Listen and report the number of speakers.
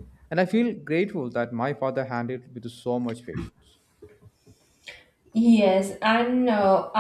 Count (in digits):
2